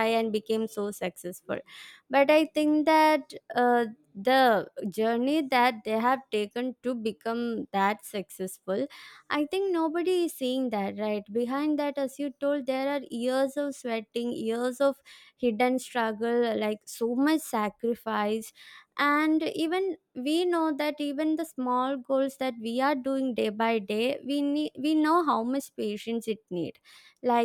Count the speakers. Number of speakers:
one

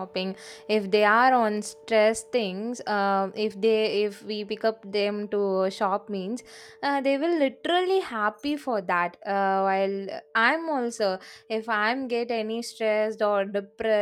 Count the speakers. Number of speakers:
one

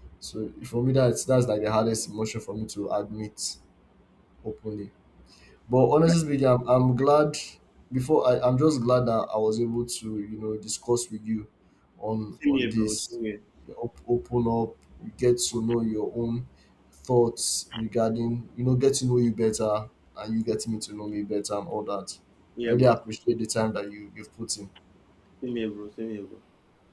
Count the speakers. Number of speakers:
two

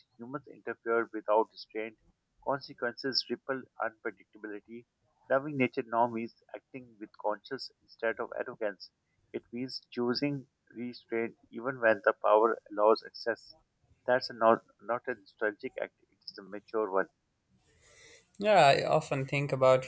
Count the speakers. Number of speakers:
two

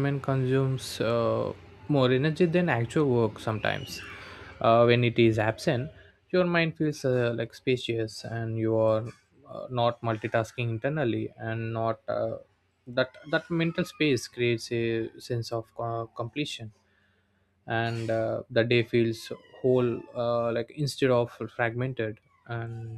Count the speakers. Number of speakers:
one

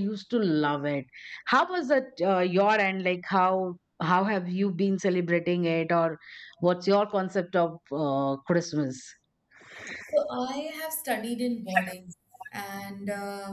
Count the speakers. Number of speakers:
two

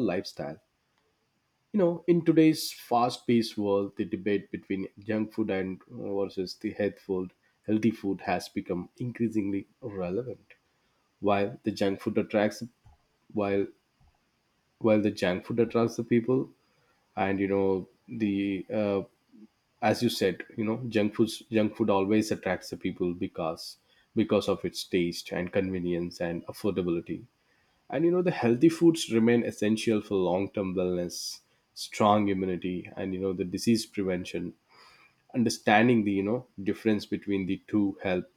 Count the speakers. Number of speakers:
one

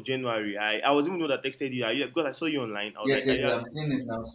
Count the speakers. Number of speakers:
two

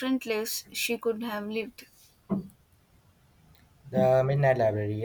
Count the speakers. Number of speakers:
two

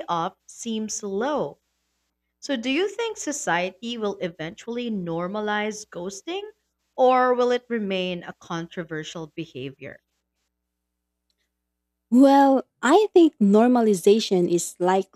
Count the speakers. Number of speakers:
two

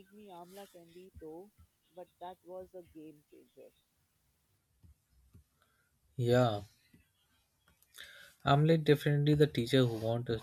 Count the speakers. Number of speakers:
two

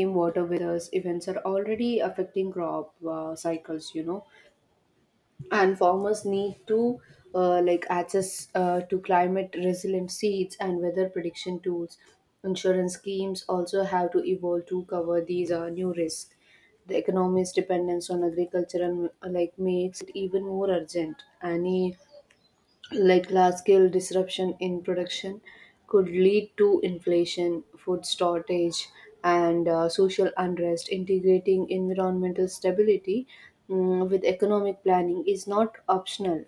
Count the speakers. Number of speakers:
one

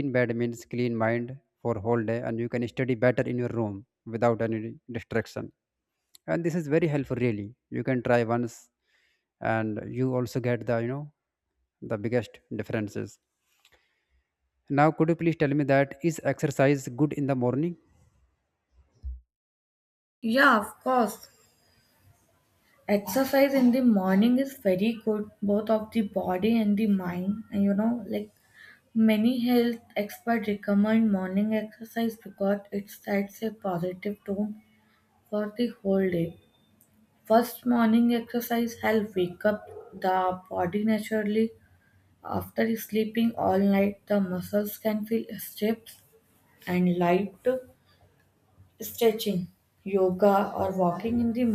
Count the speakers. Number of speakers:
two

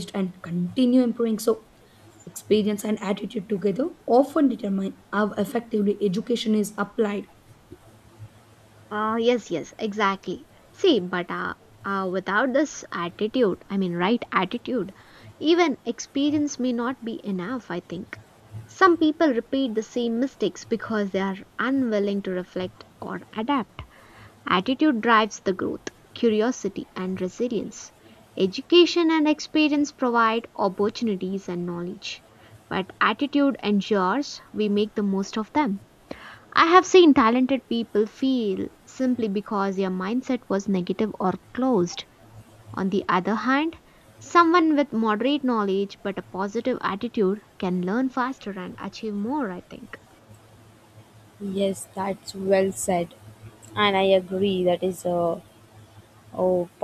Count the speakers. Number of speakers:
three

